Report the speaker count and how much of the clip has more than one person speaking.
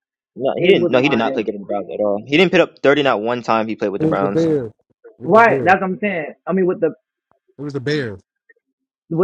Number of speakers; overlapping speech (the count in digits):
3, about 20%